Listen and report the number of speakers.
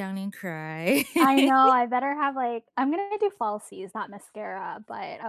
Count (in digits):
2